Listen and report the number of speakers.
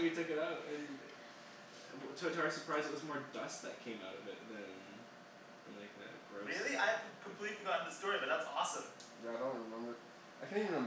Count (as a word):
three